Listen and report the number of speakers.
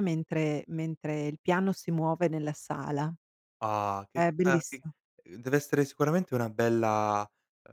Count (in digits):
2